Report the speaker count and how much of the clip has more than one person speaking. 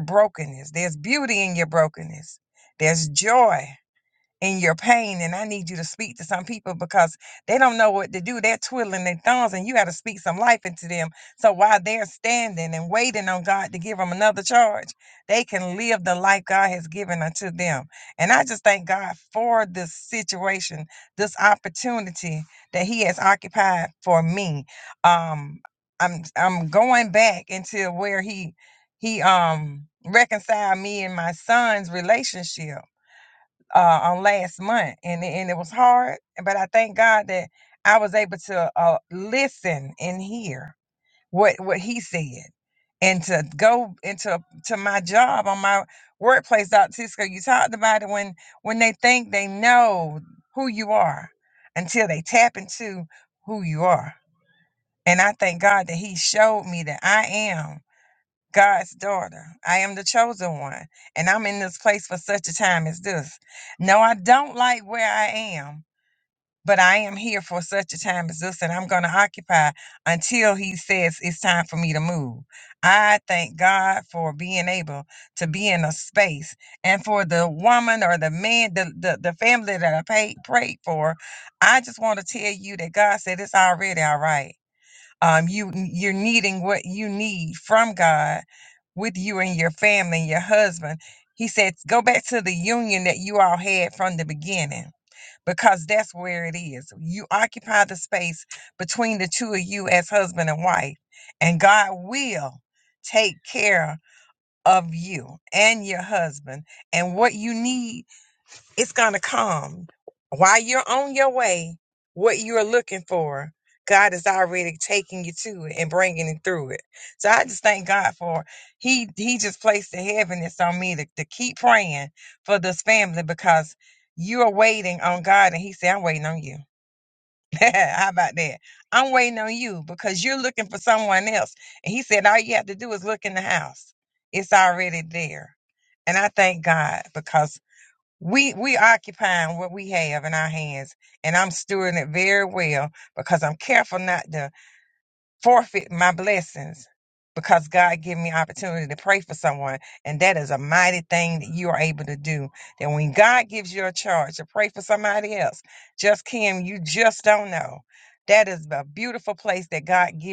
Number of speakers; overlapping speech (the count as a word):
one, no overlap